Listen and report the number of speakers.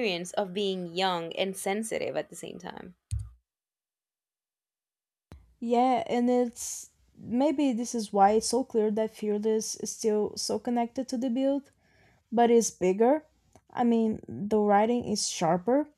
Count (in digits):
2